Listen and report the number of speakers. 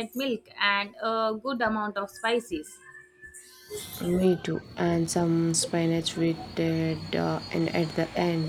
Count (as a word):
two